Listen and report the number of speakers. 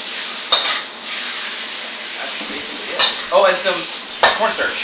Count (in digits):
1